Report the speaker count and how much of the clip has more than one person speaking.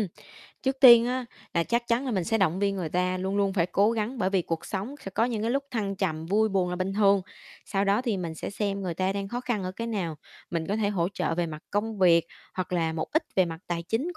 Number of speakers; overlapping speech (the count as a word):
one, no overlap